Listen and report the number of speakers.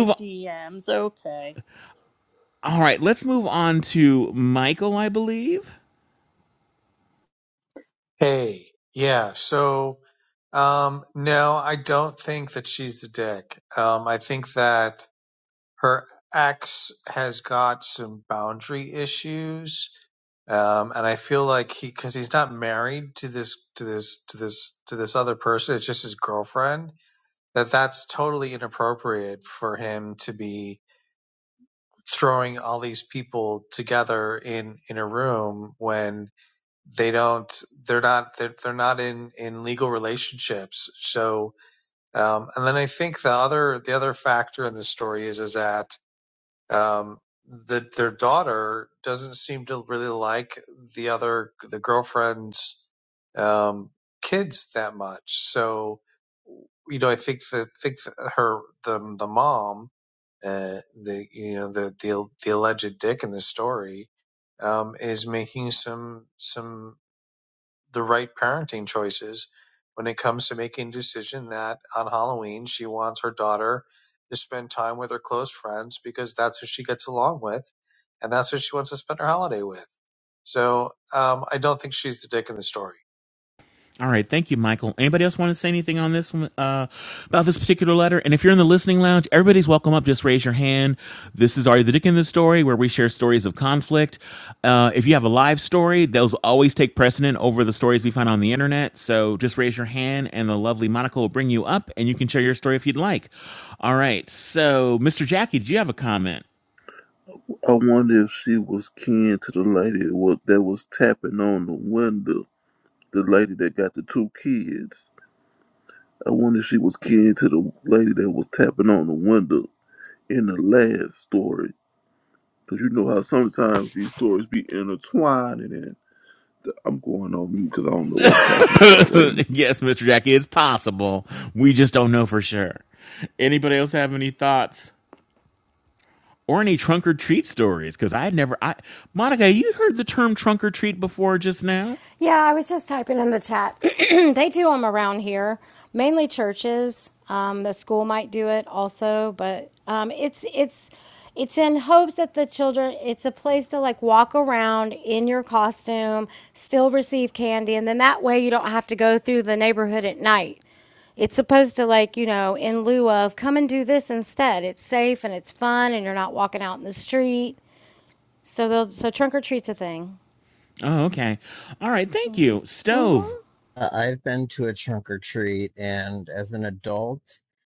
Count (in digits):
6